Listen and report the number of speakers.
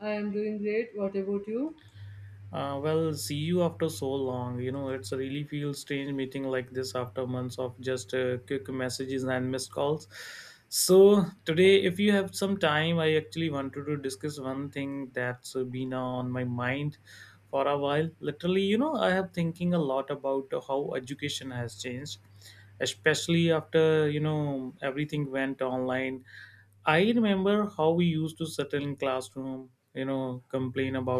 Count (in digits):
2